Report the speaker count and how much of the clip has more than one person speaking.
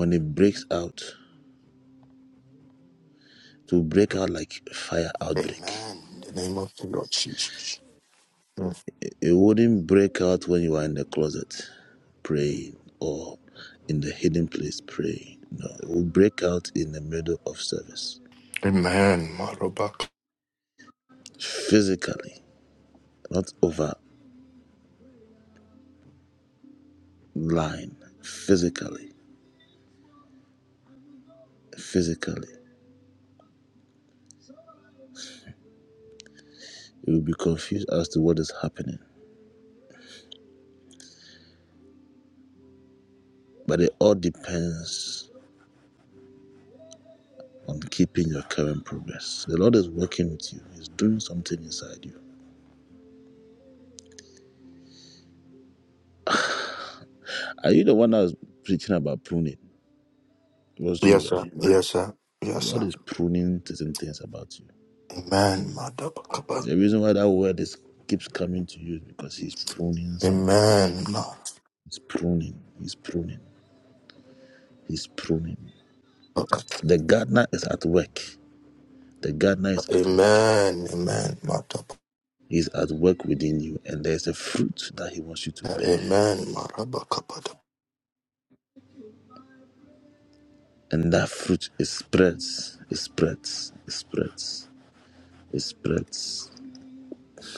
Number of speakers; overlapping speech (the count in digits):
2, about 3%